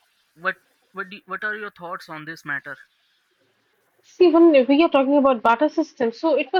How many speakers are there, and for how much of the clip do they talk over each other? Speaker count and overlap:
two, no overlap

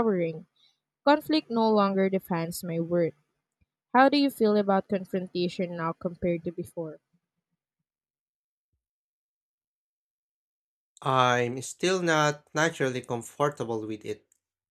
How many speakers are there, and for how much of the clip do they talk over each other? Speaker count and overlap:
two, no overlap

